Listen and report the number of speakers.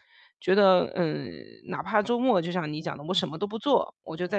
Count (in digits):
1